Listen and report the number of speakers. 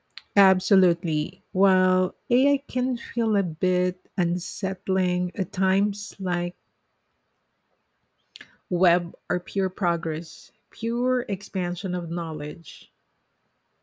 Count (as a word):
one